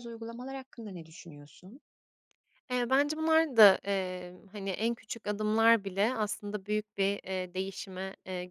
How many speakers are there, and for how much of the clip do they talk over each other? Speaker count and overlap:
two, no overlap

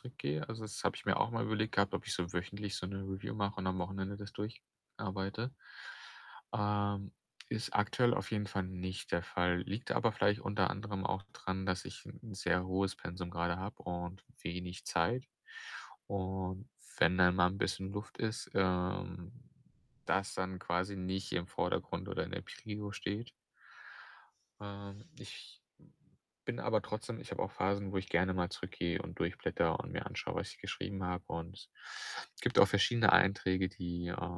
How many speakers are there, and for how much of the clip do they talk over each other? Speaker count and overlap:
one, no overlap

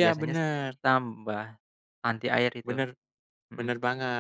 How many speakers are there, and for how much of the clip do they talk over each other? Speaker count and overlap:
two, about 14%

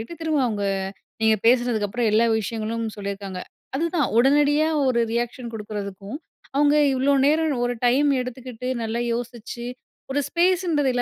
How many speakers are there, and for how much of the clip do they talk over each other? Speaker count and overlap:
one, no overlap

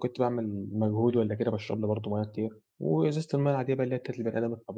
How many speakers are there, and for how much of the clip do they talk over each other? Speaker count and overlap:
one, no overlap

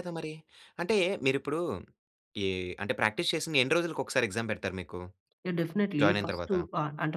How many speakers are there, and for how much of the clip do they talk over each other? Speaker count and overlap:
two, about 8%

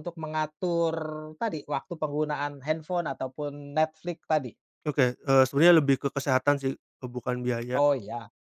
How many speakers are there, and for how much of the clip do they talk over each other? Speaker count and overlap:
two, about 1%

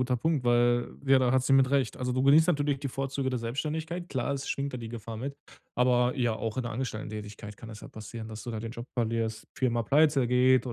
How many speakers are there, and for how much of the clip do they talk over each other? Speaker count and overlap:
one, no overlap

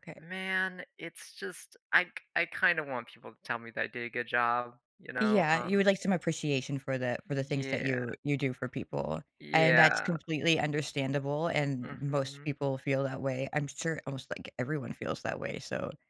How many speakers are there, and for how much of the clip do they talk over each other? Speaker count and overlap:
two, about 15%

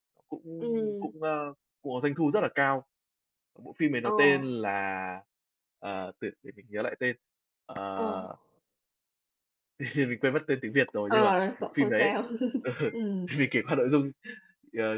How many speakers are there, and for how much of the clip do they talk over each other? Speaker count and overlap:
two, about 10%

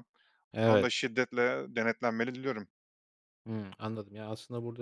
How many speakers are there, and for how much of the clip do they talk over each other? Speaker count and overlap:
two, about 5%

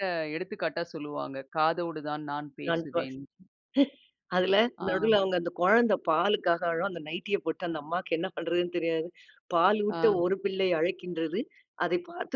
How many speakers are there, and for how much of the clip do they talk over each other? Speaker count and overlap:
two, about 2%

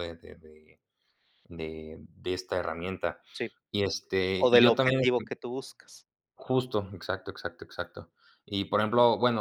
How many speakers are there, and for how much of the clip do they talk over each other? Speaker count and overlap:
two, about 7%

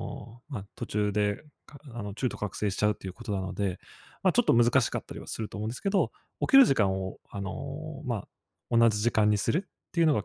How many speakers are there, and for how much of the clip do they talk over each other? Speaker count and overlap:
one, no overlap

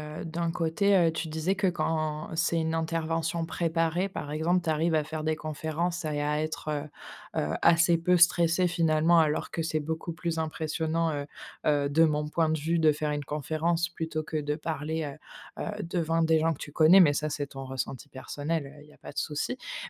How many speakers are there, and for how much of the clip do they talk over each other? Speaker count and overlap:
one, no overlap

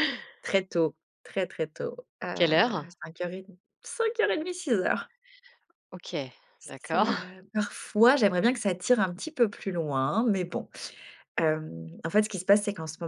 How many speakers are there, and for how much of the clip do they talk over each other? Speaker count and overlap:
two, about 2%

